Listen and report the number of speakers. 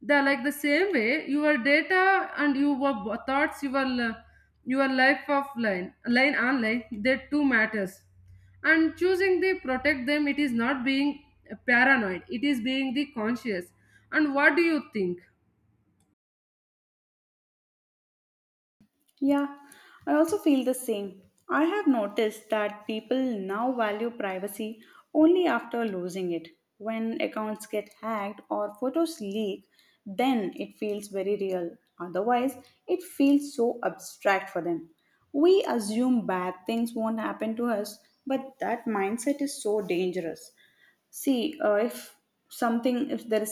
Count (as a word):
two